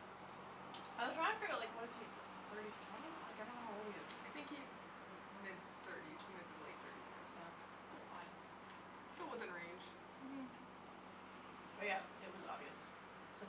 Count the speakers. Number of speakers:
two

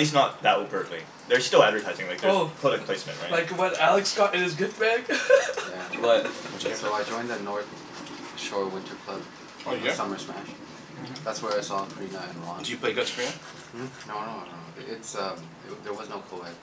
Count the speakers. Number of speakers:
four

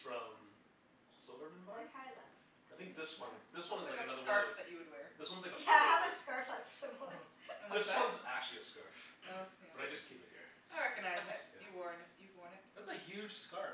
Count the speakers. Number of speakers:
four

